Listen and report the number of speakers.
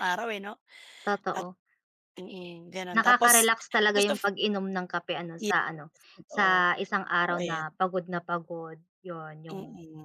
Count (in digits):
2